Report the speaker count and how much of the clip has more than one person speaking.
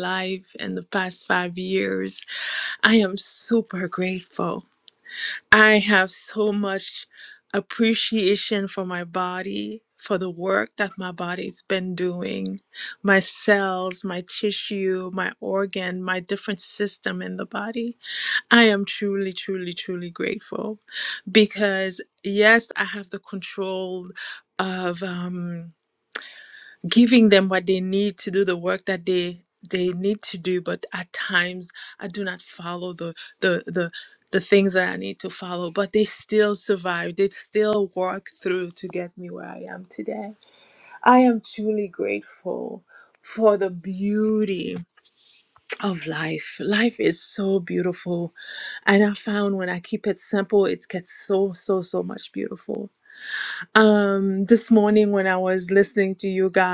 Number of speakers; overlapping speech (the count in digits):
1, no overlap